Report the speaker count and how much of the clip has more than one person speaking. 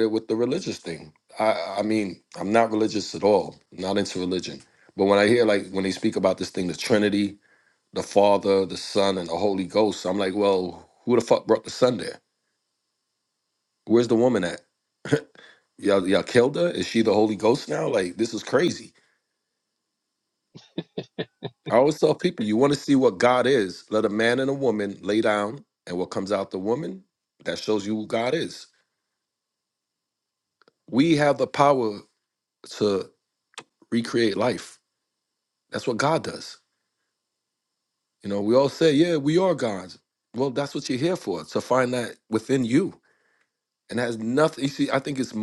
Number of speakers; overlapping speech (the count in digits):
1, no overlap